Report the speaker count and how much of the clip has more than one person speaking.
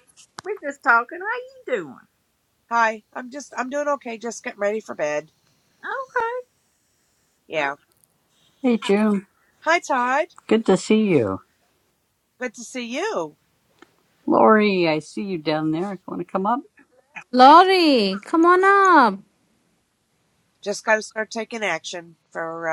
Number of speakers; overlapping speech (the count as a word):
four, about 1%